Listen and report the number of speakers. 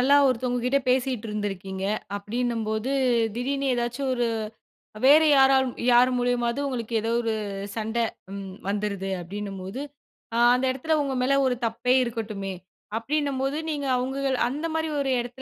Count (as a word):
one